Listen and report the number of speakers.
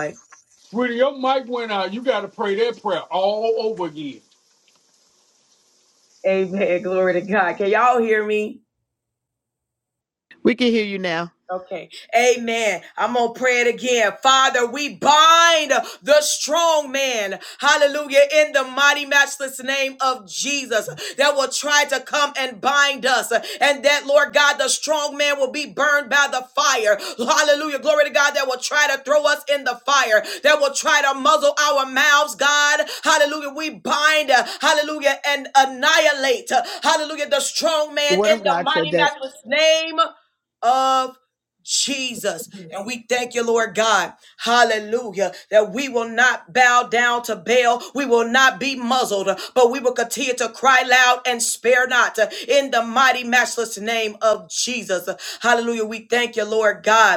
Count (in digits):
3